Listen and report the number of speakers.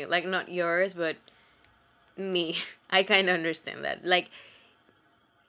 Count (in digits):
1